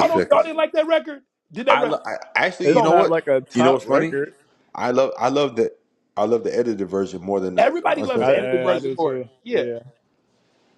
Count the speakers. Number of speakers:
three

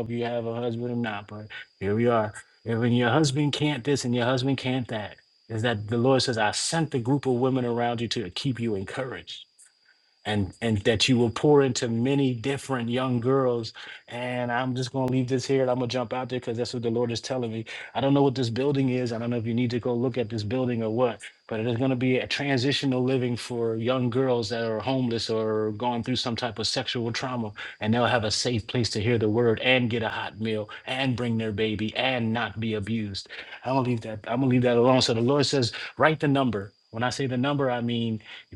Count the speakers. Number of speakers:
one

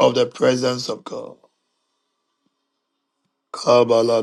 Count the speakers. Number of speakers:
one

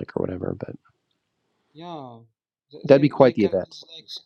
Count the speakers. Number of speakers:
two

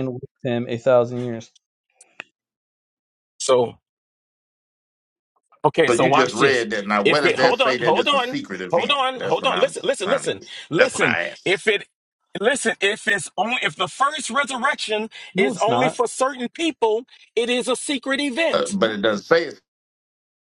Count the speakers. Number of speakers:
three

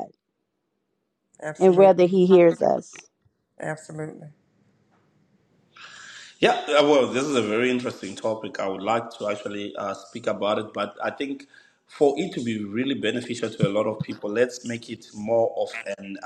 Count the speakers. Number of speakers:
three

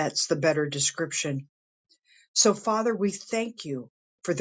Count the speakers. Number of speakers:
one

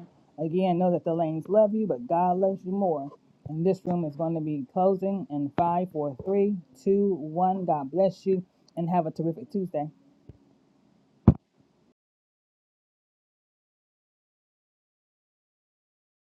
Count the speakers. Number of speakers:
one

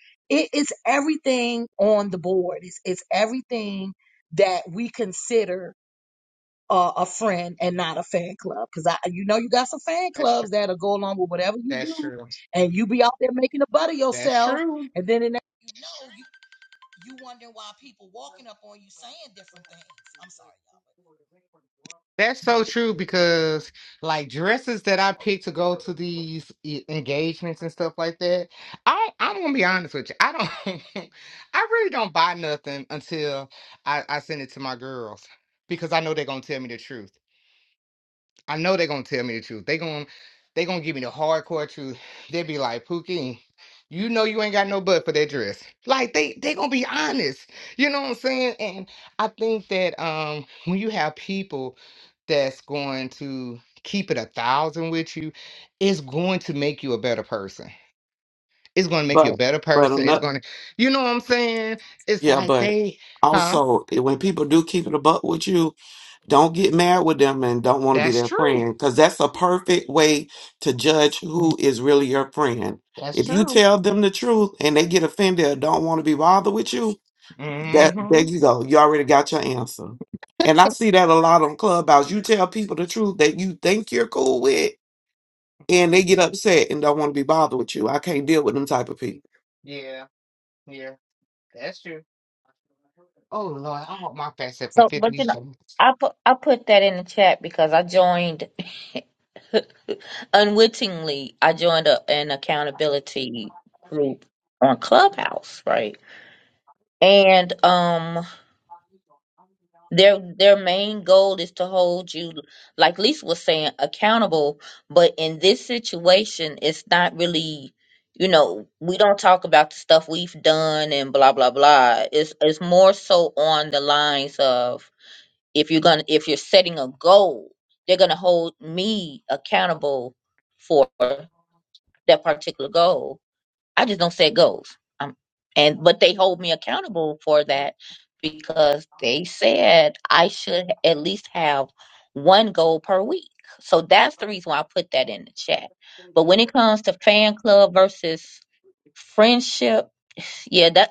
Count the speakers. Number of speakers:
four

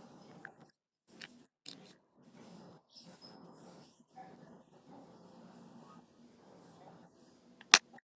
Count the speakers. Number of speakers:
zero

